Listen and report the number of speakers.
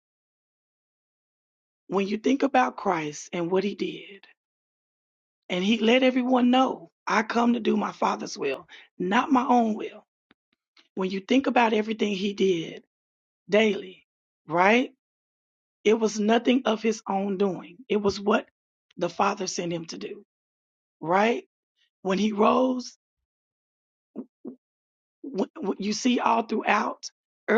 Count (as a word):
one